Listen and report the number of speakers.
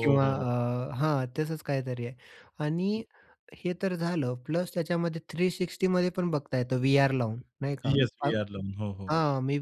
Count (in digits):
2